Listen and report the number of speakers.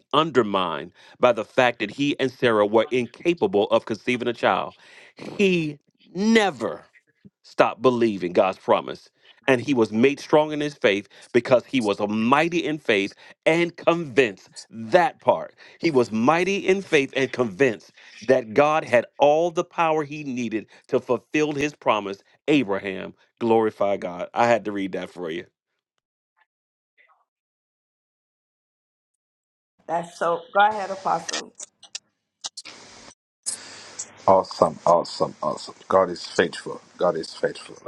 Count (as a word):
three